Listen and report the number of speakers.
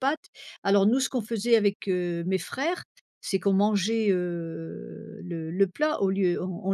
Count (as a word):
one